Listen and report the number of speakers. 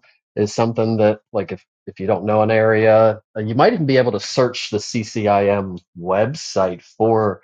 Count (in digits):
1